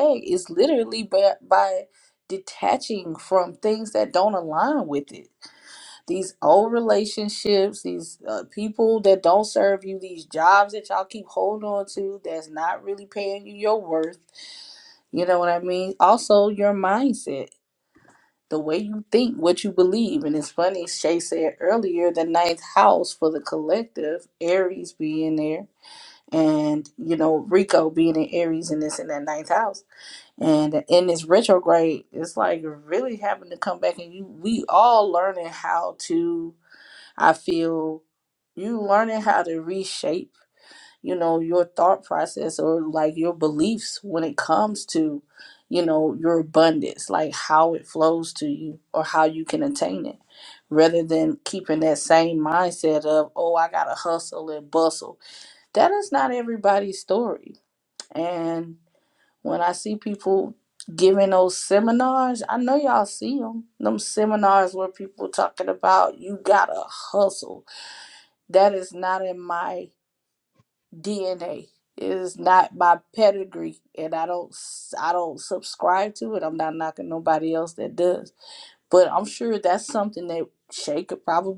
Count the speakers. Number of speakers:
one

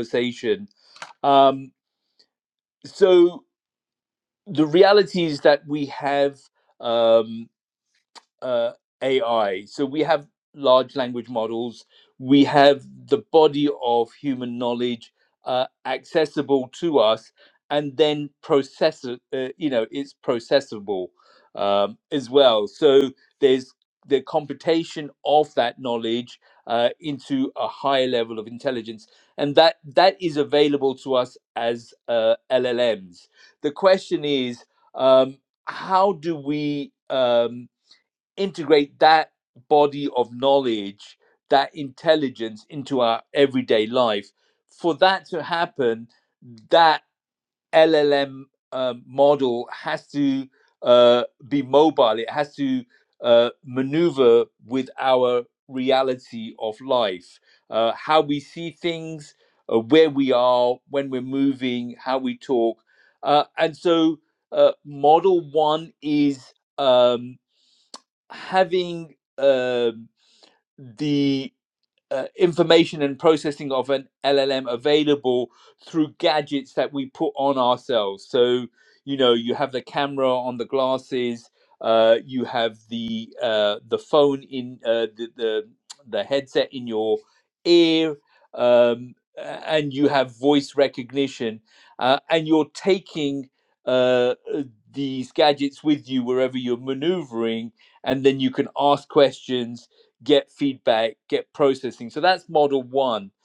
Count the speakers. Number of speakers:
one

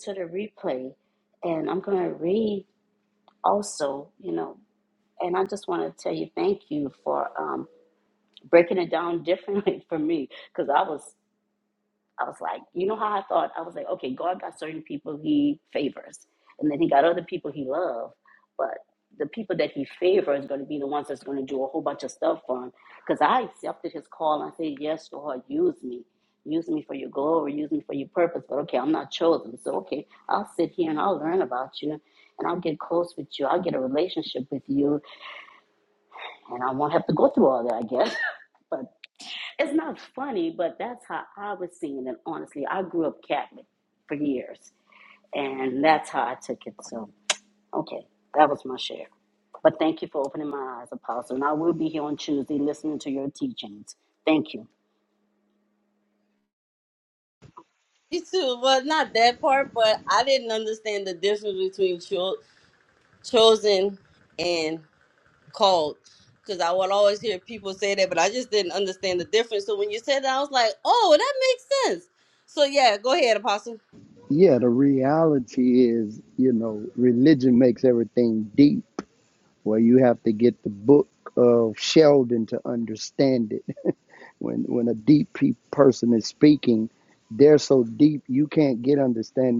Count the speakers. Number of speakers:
three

